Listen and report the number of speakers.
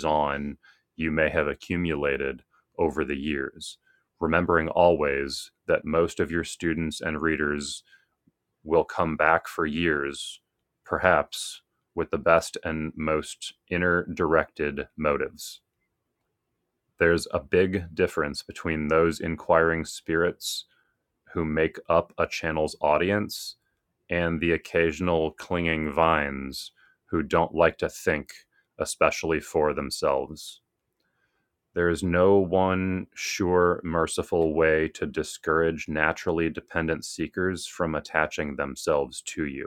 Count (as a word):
one